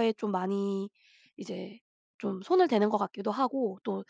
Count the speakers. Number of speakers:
1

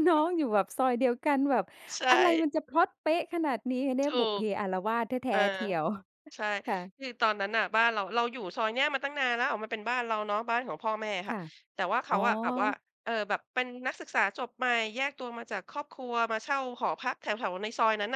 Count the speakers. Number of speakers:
2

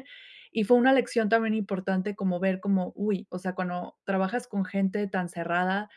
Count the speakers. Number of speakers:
1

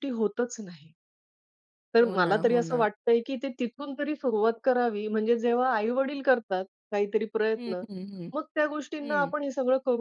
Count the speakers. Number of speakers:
2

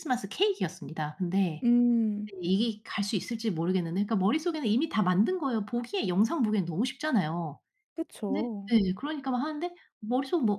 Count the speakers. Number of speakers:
2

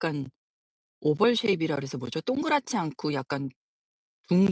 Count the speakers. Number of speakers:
1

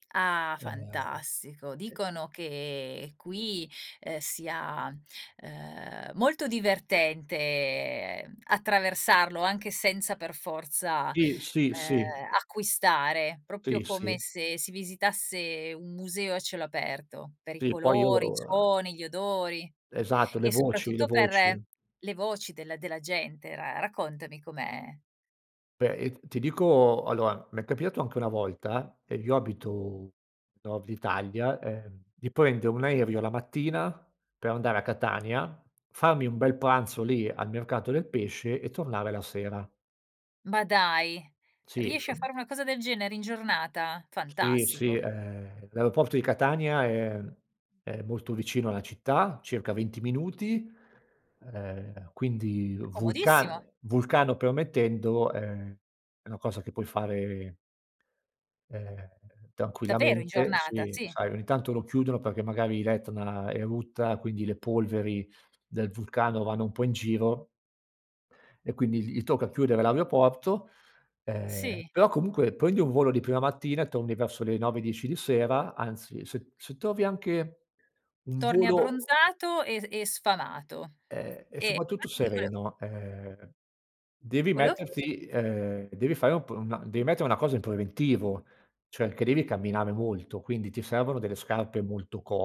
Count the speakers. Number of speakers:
2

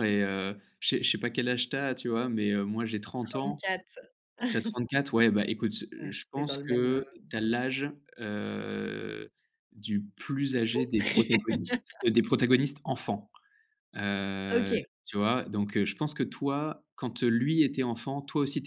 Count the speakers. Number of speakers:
2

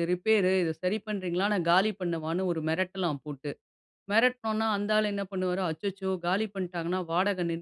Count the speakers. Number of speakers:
1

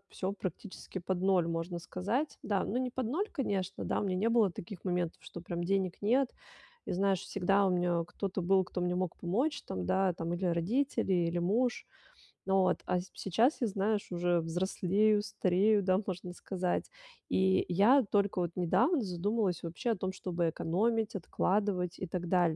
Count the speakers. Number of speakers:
1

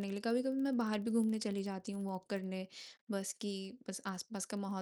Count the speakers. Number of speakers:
1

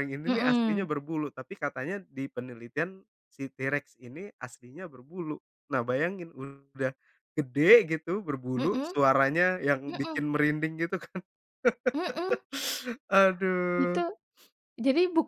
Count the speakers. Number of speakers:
2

